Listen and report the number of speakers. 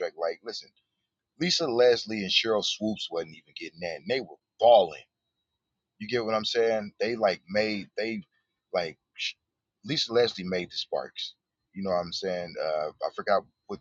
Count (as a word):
one